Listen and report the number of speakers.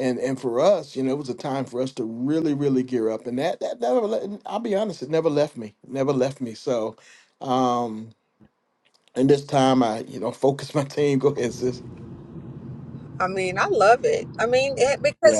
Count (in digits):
2